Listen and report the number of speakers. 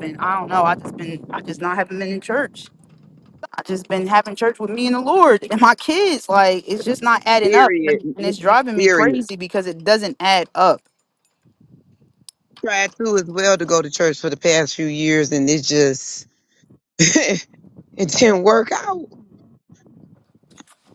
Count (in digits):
2